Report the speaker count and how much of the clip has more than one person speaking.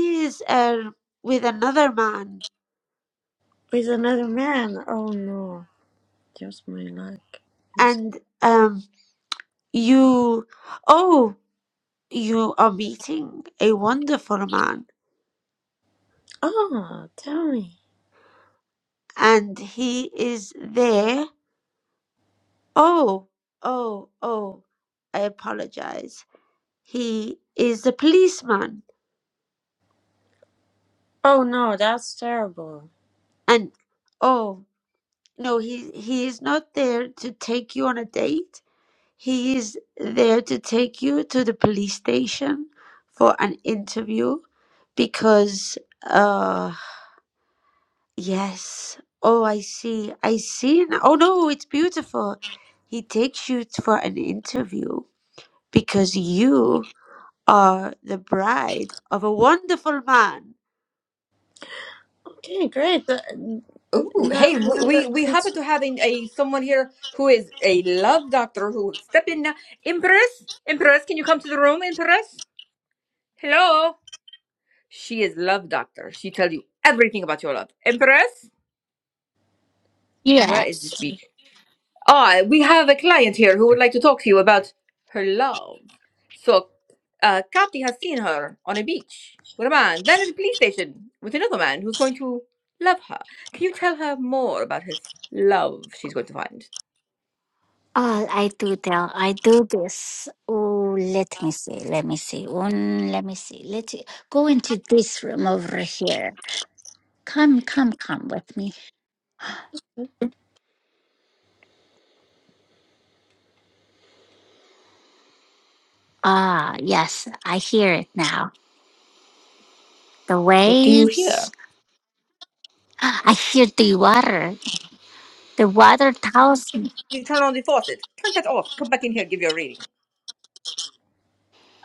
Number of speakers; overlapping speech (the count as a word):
four, about 2%